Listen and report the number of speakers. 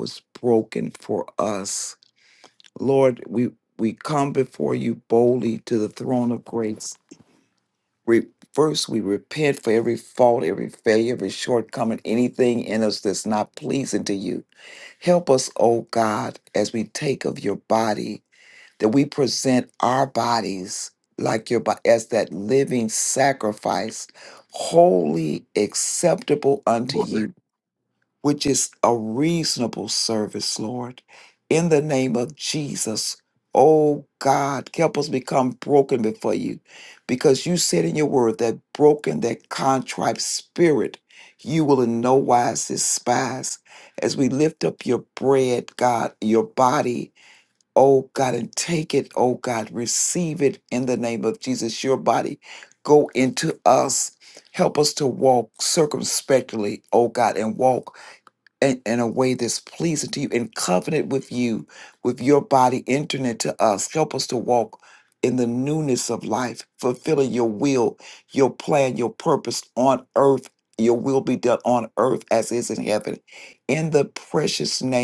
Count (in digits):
1